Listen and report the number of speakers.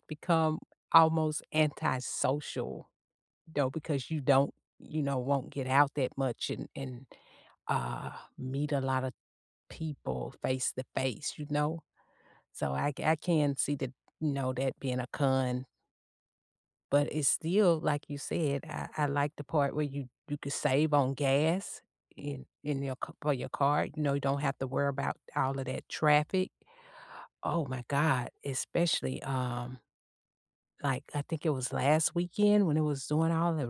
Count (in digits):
1